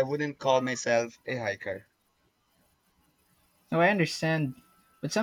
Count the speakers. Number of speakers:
2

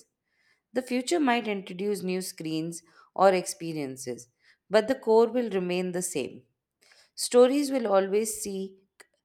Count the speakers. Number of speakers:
1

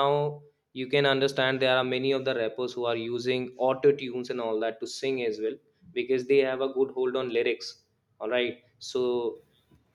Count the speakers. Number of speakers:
1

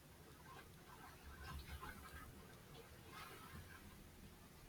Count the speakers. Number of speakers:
0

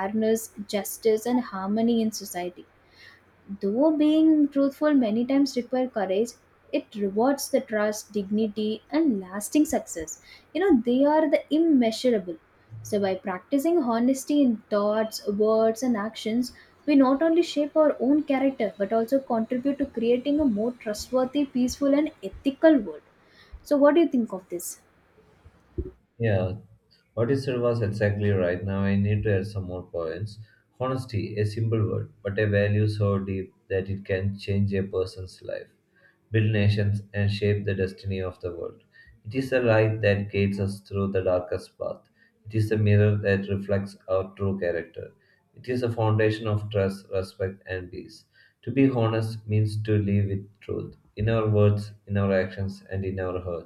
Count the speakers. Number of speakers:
2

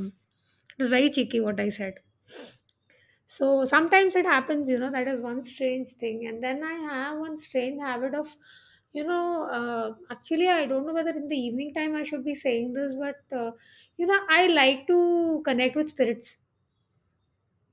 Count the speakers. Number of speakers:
1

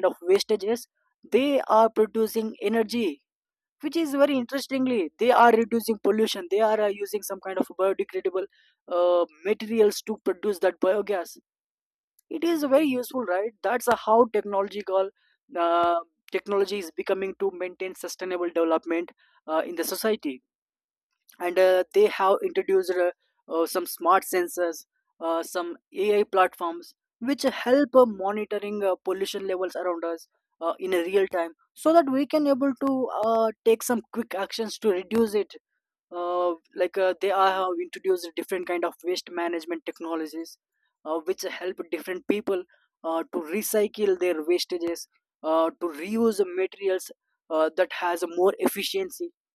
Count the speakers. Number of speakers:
1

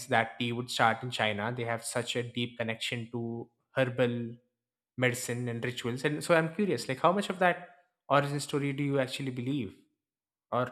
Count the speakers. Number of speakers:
1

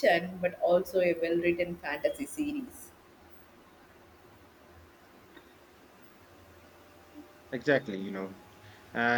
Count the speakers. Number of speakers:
2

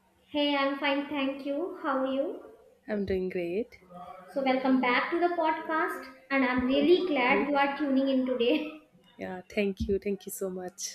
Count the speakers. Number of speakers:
2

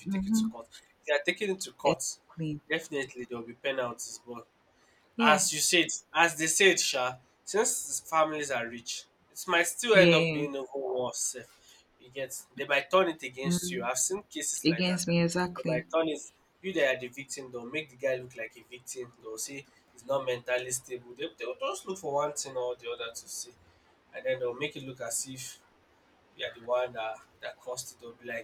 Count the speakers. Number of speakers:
2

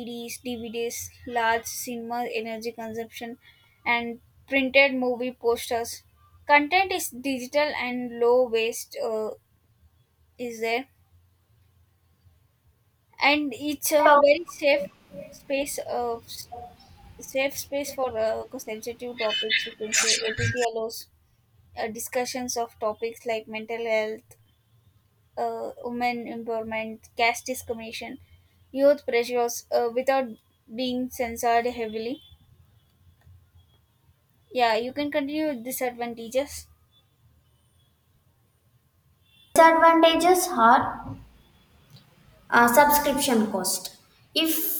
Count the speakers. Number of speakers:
2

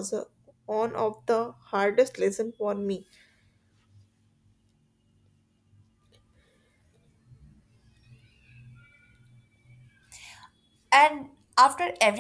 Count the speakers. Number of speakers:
2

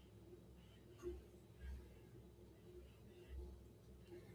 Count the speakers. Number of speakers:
0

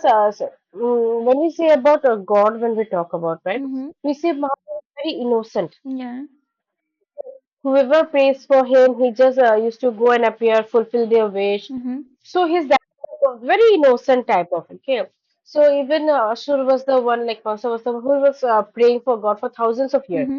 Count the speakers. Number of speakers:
2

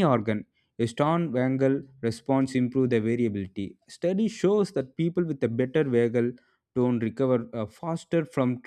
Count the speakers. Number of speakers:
1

